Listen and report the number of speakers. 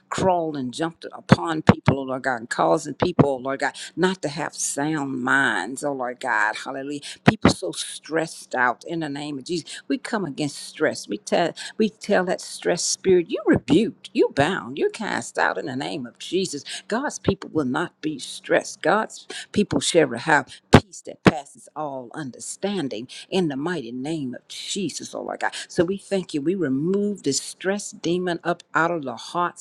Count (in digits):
1